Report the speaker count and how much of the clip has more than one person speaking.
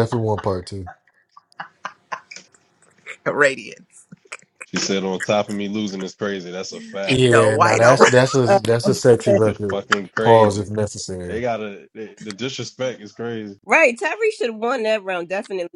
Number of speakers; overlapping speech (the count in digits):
4, about 13%